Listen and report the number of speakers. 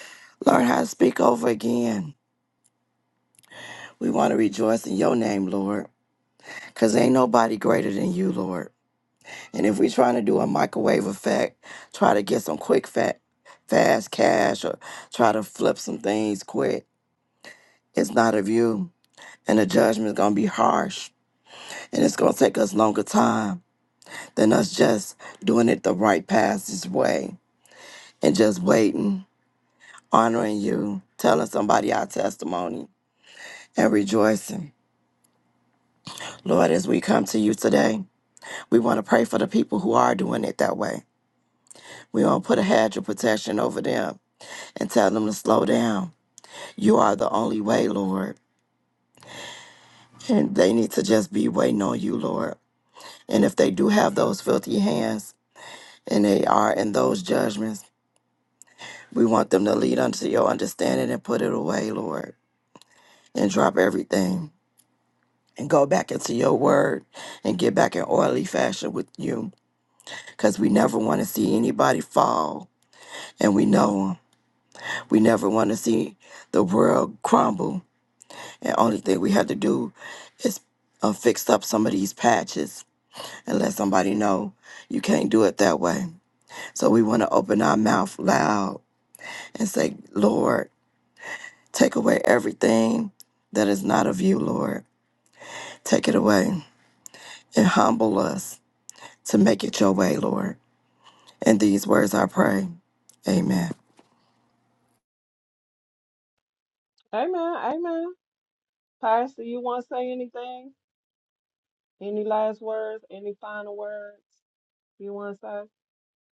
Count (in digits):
2